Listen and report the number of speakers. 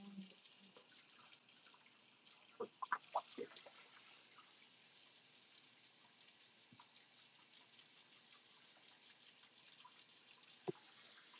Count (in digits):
0